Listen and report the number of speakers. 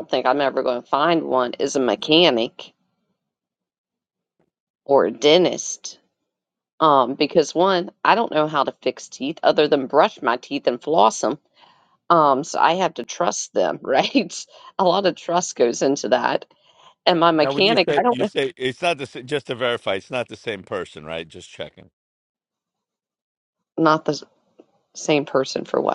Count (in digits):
2